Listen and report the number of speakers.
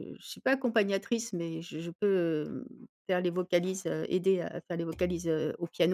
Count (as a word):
one